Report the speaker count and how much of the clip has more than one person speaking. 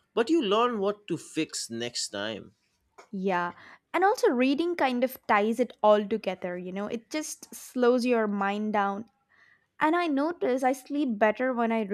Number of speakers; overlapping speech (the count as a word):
two, no overlap